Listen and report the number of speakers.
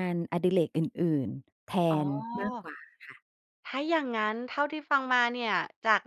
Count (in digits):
2